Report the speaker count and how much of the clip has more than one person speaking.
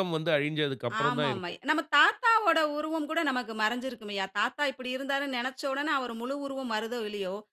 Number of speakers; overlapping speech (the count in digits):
2, about 7%